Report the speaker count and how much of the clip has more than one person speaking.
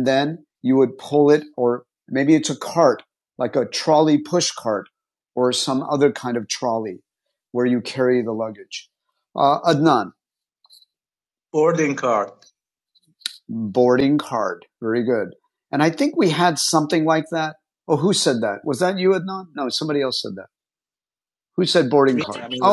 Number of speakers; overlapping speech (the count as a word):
two, about 3%